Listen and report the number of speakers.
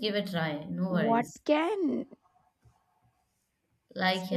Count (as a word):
two